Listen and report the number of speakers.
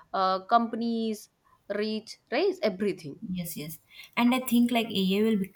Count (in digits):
2